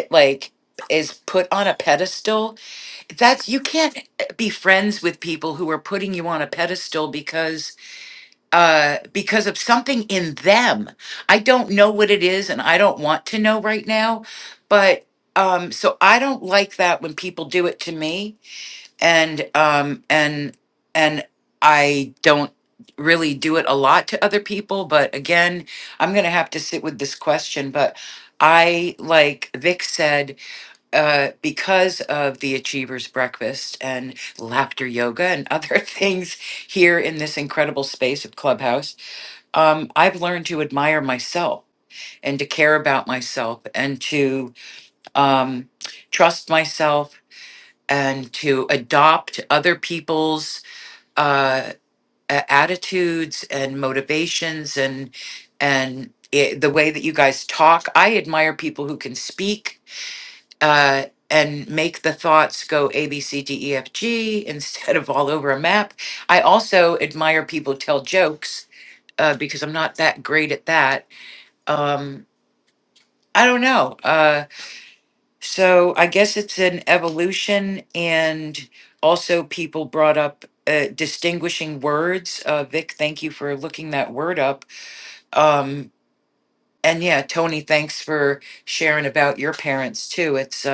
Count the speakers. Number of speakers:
one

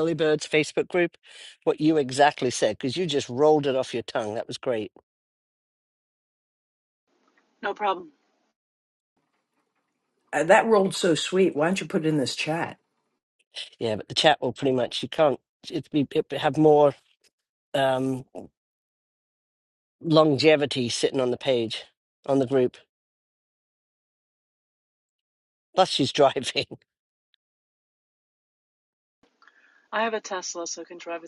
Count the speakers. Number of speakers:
three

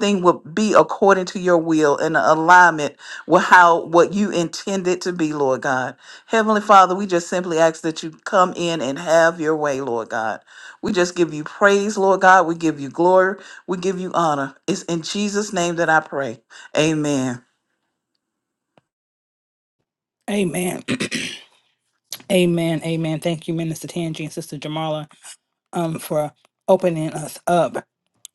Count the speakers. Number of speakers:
two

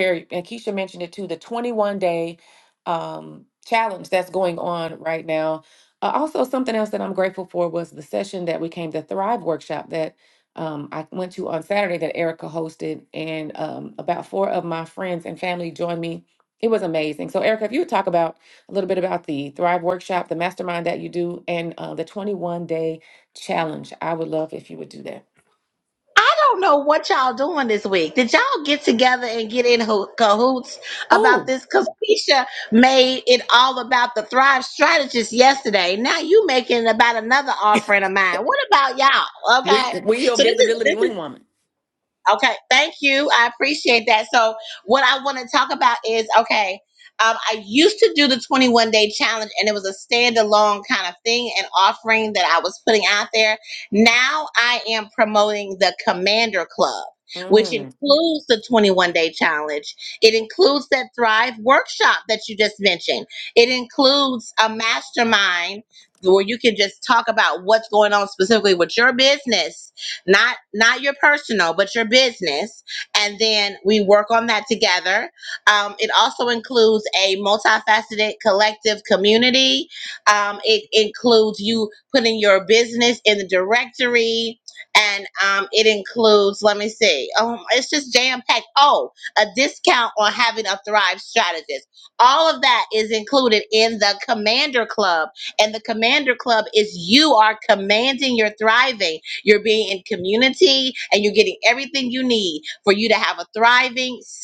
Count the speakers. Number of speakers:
two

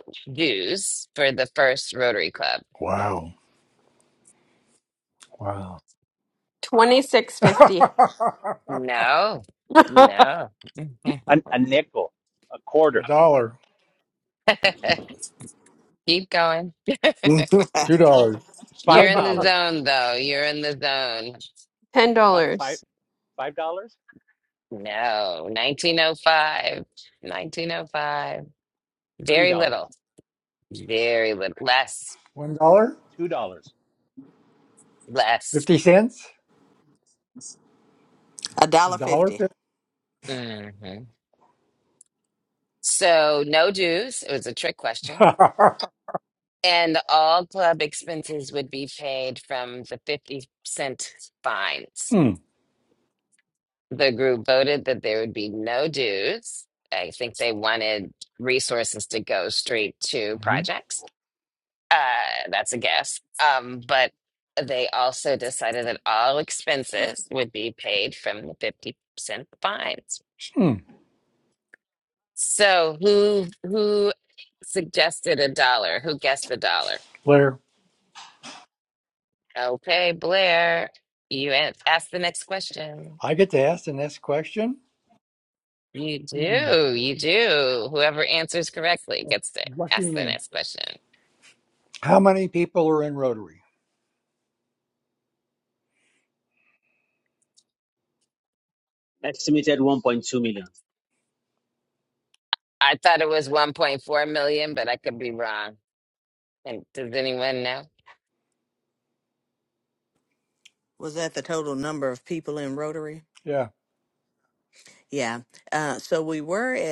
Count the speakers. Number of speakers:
six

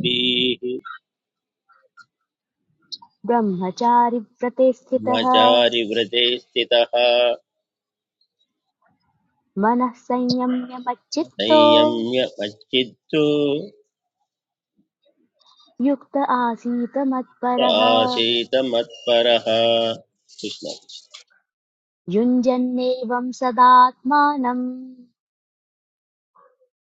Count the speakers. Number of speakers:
two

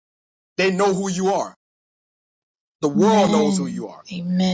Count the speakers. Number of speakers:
two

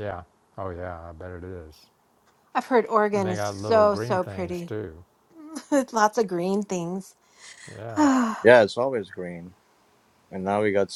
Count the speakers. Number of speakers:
three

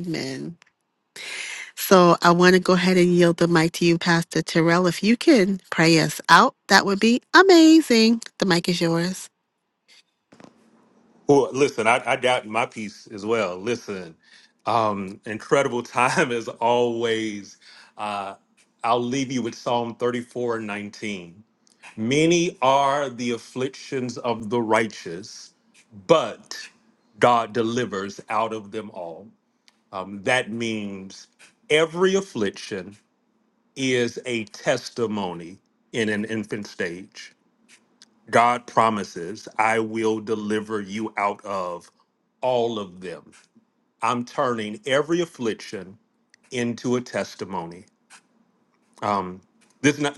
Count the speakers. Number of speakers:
two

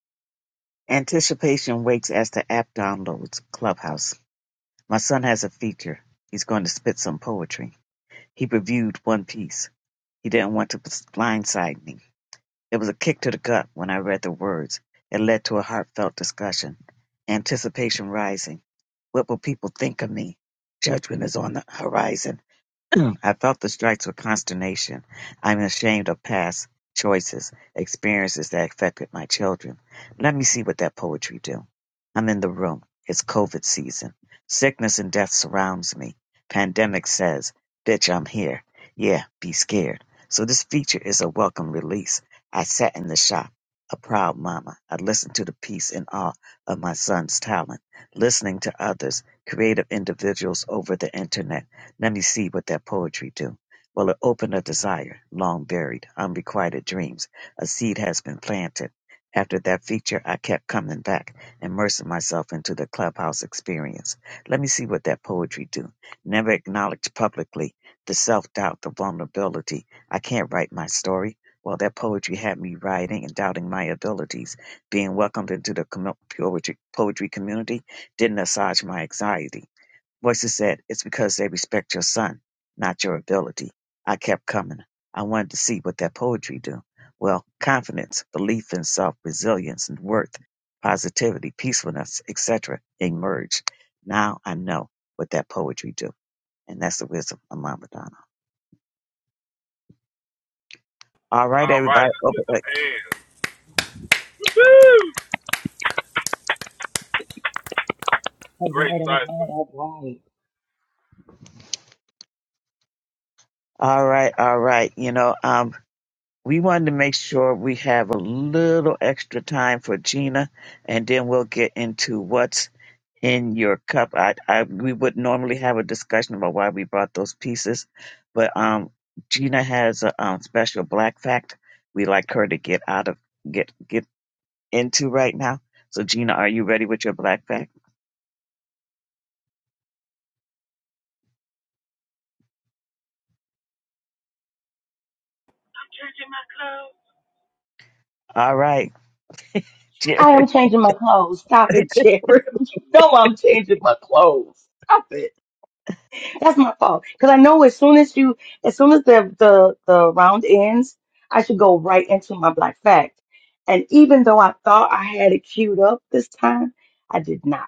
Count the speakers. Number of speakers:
three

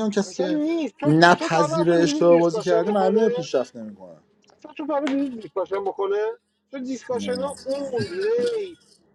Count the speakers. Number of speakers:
two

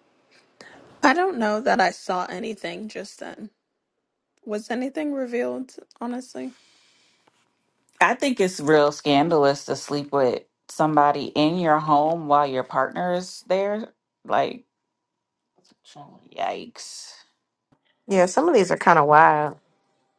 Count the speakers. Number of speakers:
three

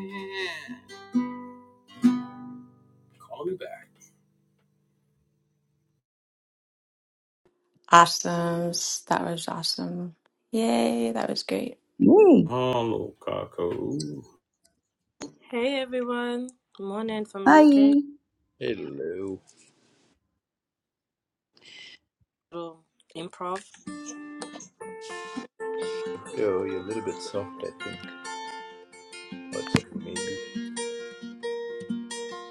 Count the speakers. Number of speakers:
five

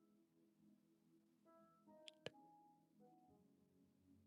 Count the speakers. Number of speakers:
zero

